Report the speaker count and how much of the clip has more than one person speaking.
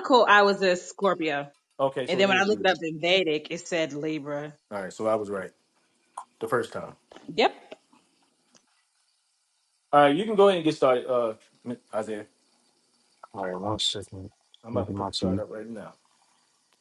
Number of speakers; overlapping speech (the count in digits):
3, about 8%